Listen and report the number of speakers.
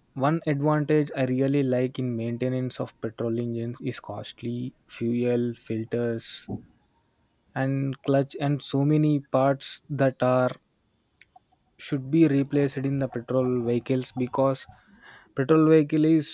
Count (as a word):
one